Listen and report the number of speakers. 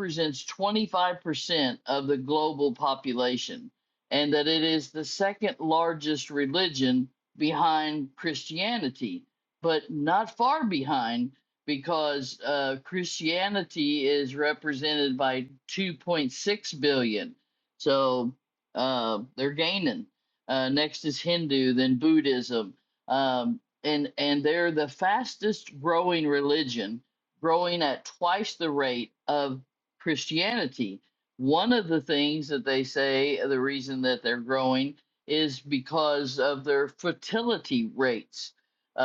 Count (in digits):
1